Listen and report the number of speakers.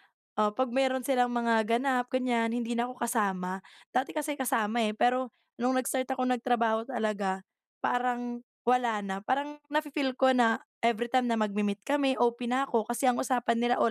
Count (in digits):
1